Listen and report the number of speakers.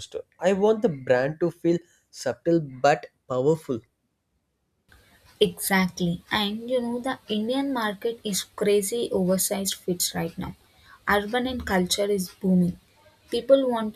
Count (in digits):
2